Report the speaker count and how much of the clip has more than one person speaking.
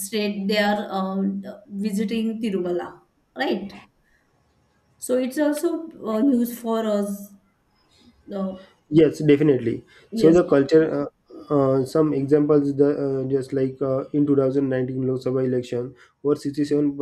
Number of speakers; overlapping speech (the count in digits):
2, about 1%